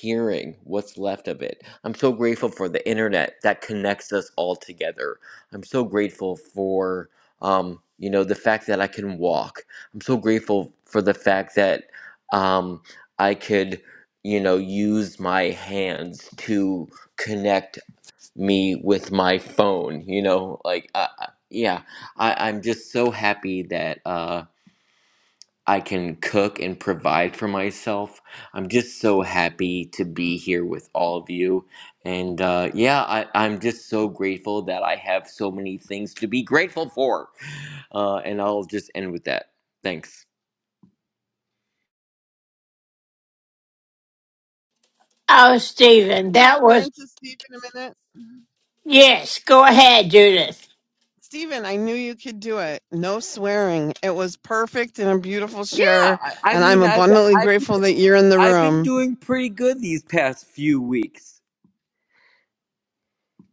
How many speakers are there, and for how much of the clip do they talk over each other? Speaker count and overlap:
3, about 4%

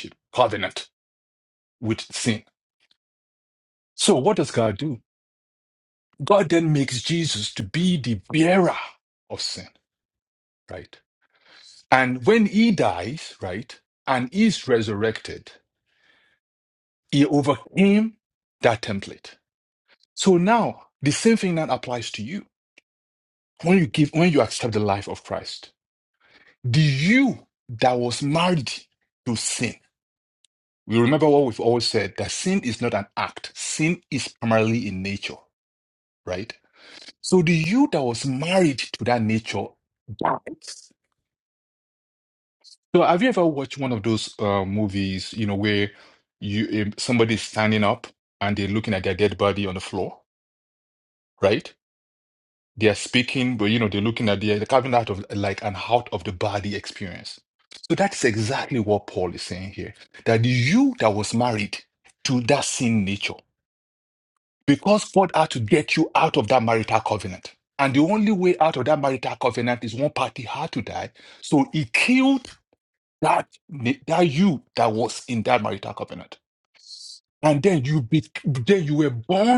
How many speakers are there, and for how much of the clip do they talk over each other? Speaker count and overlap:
1, no overlap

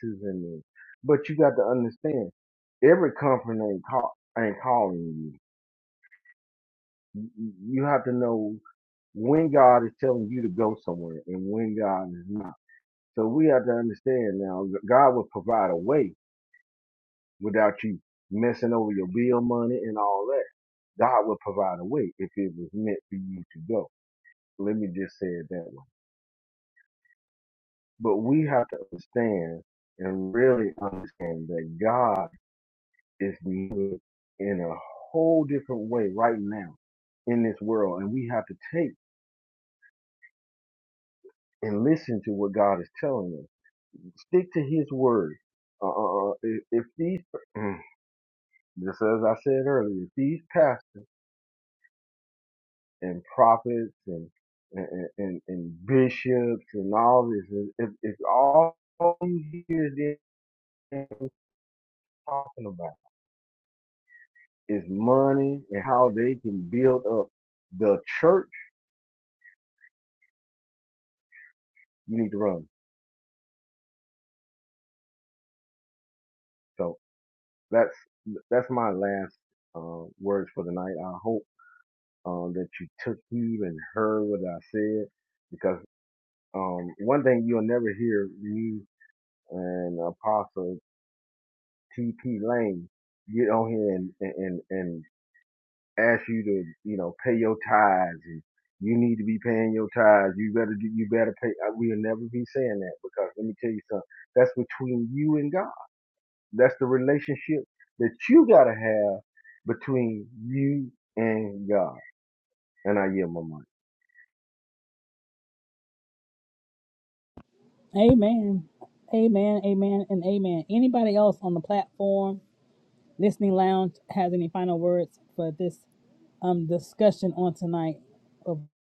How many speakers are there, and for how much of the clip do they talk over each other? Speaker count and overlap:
2, no overlap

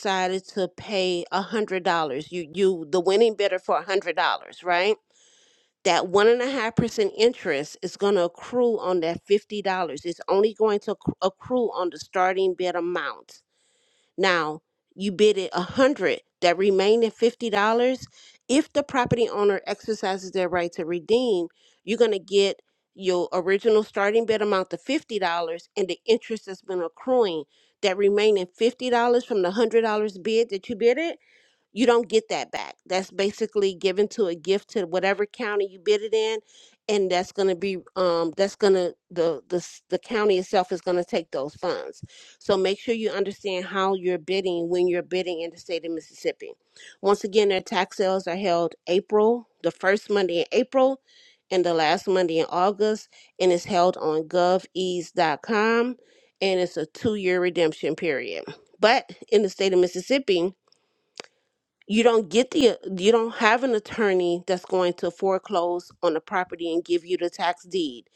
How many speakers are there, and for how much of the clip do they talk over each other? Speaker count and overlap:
1, no overlap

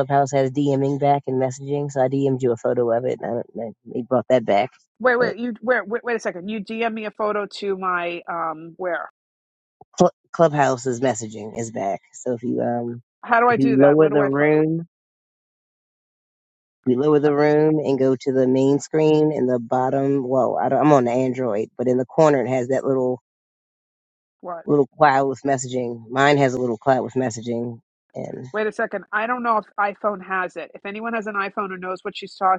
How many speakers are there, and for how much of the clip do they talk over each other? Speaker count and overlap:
2, about 3%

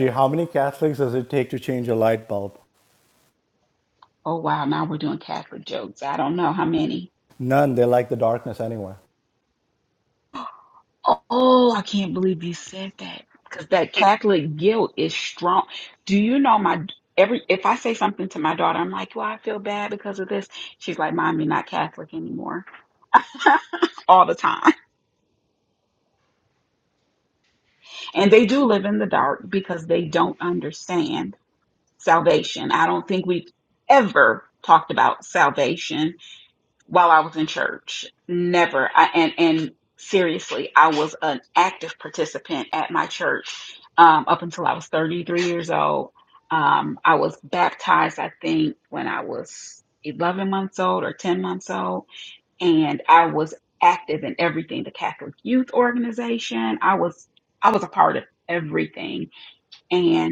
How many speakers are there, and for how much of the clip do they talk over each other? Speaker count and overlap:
2, no overlap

